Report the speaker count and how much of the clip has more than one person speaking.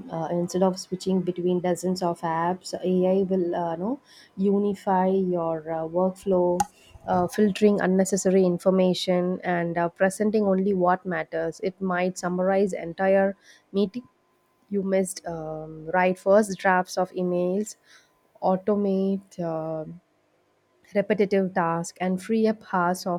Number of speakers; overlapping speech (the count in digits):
1, no overlap